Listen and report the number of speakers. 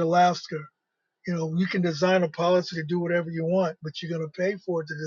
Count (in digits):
1